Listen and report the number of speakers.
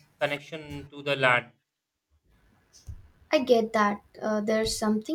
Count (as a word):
two